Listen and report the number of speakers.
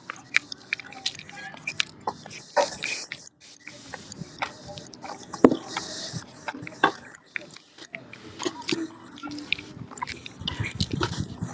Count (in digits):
0